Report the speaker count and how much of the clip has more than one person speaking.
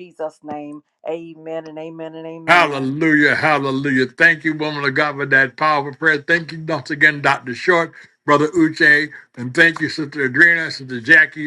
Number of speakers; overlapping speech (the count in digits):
2, about 4%